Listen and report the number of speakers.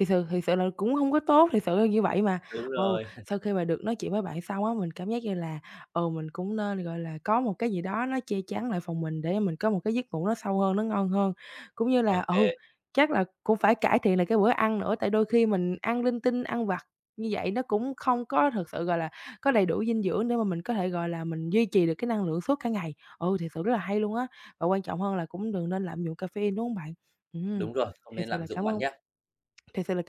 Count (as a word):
two